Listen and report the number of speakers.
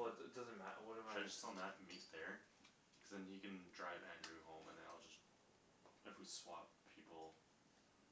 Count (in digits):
2